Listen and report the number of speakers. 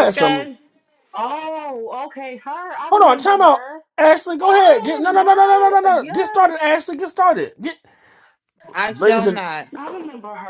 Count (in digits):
3